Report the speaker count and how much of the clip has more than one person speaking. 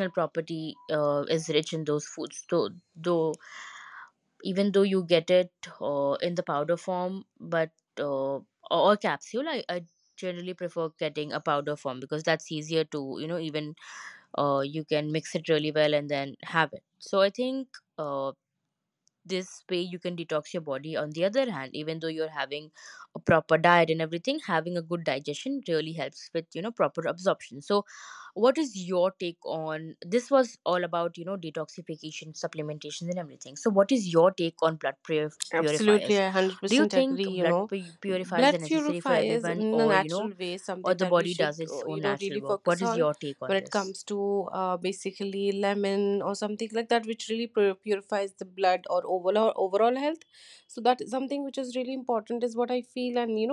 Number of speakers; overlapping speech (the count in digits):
2, about 12%